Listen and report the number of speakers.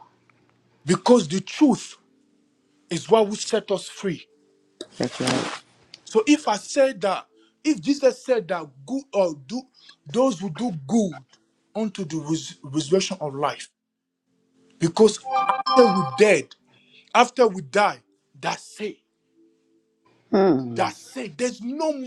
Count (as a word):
two